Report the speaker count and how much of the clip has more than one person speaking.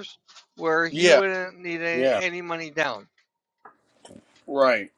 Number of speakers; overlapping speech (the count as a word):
two, about 12%